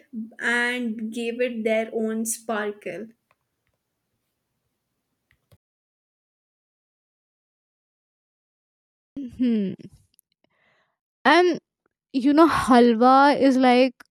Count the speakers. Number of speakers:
2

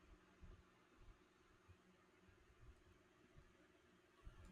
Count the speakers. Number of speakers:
0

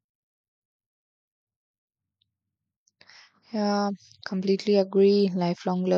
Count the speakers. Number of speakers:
1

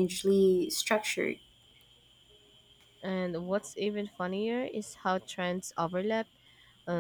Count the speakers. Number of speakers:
2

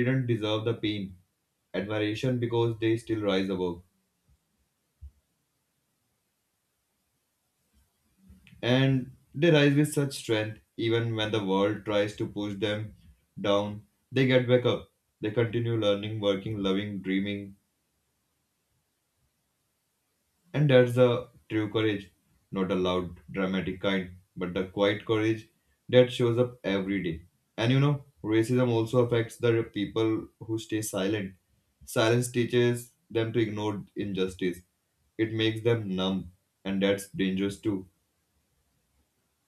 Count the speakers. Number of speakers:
1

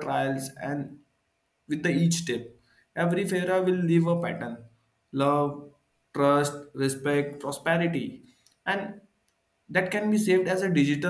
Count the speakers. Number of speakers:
1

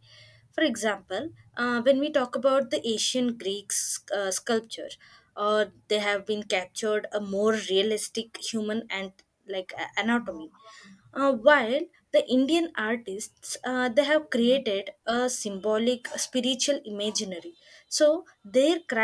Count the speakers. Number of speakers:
1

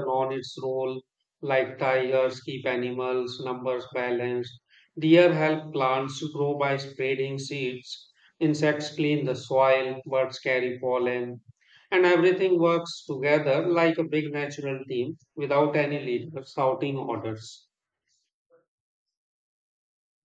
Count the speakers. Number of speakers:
1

